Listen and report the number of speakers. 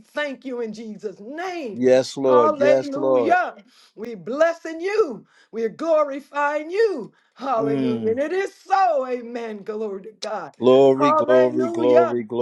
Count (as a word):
two